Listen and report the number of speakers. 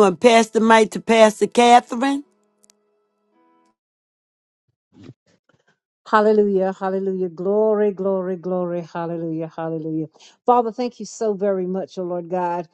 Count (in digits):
2